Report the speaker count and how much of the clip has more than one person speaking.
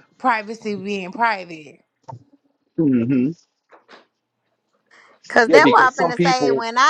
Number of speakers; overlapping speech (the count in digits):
3, about 17%